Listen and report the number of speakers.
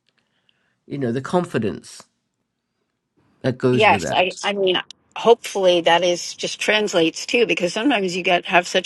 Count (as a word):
two